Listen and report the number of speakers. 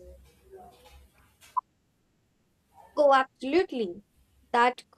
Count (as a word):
one